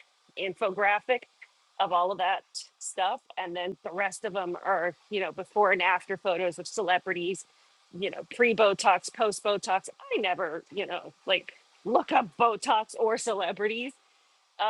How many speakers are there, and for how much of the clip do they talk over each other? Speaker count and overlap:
1, no overlap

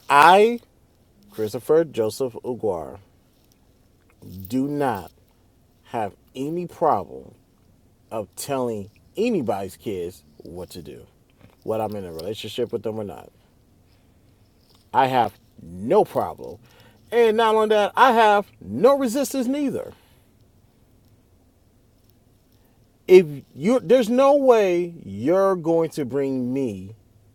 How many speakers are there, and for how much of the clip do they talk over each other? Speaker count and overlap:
1, no overlap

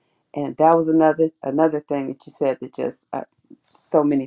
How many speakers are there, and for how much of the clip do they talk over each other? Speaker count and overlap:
1, no overlap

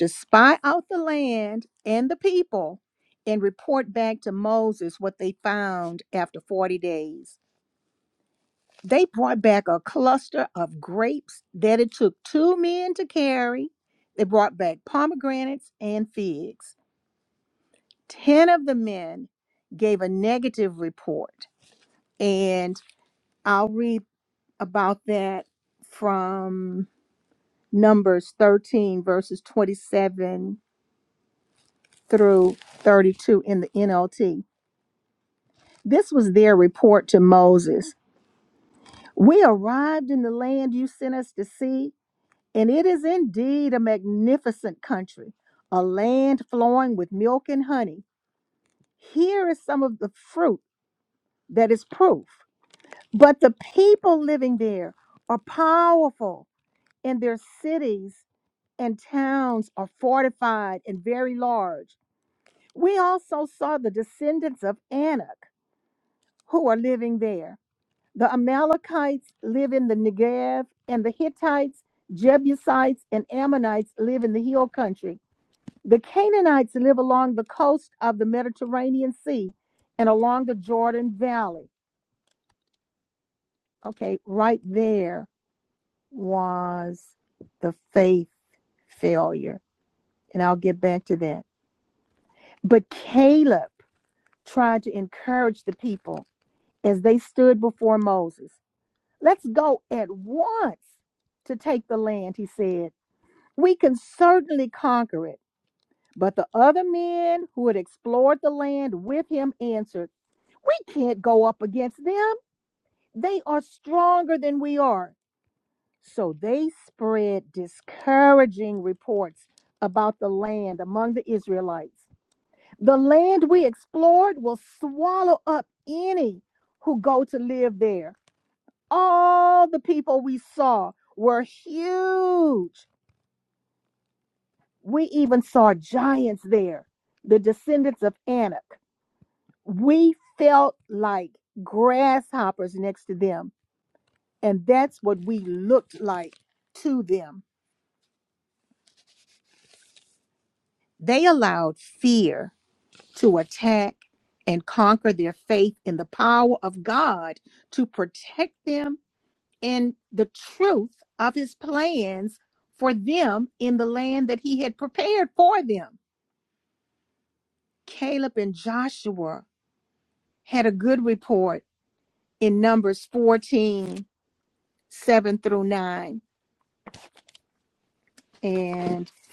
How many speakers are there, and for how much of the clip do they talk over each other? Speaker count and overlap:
1, no overlap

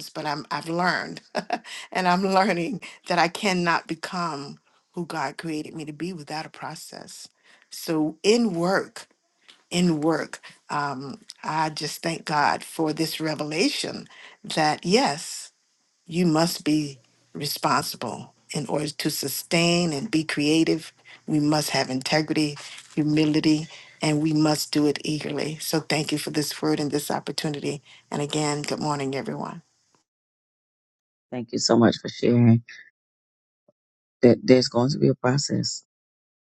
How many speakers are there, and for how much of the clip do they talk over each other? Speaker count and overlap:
2, no overlap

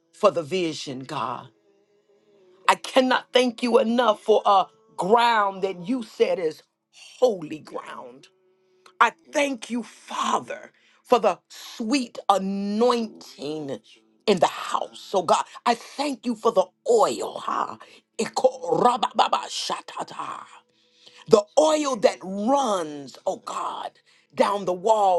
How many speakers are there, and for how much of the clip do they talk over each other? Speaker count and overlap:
1, no overlap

